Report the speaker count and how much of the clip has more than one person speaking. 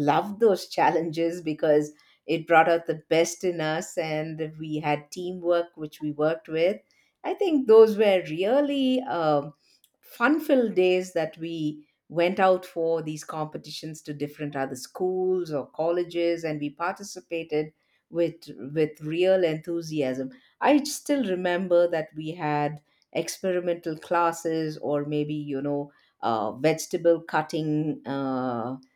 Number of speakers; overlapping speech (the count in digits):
1, no overlap